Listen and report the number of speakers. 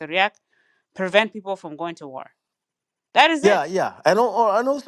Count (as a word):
two